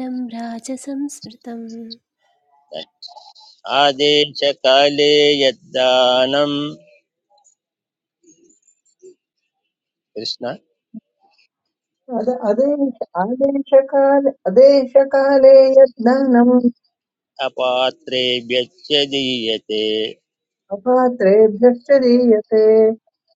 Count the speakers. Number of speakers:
three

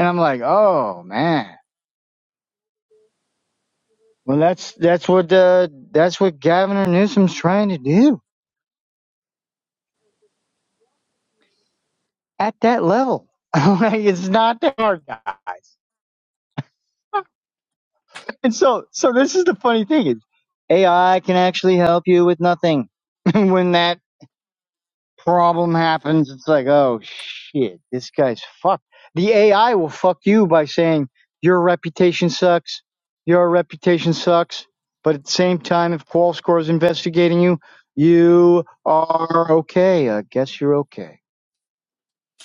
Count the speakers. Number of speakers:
one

